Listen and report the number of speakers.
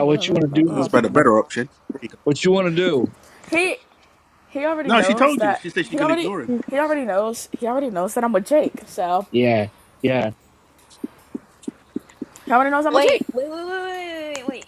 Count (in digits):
4